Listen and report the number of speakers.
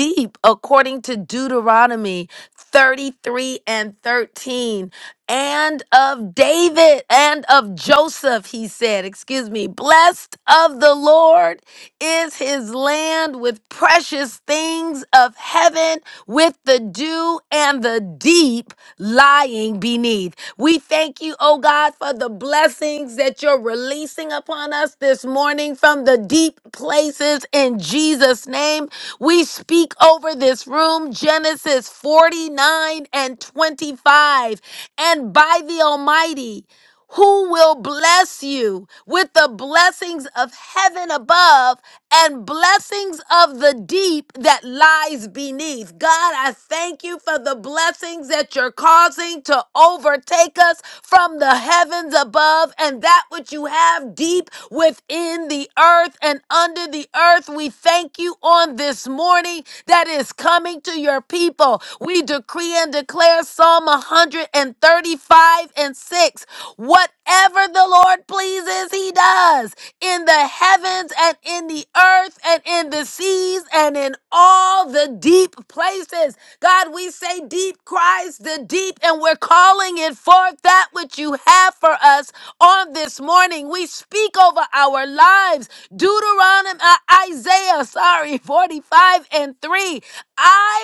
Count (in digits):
1